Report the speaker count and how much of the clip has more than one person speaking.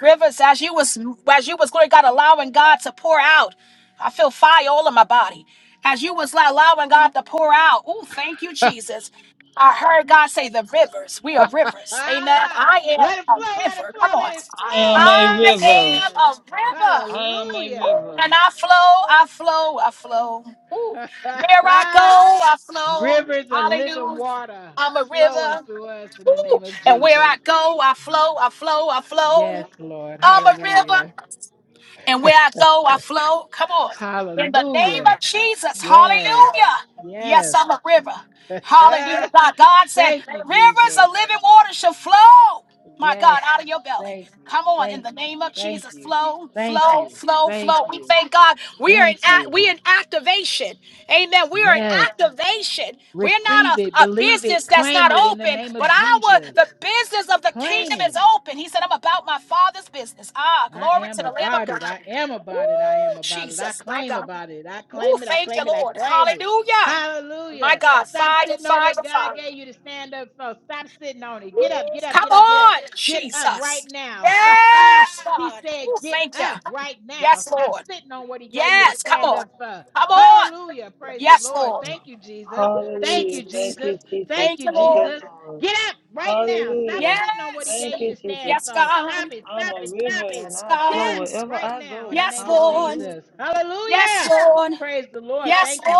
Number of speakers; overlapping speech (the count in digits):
3, about 40%